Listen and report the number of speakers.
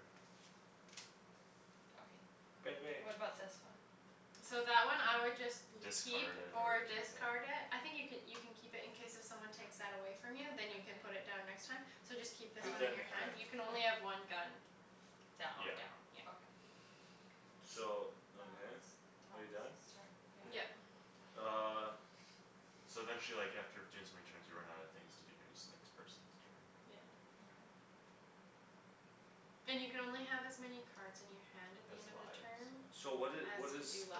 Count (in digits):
4